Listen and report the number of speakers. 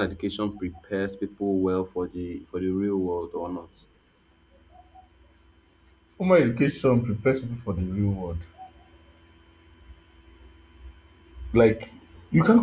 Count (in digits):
2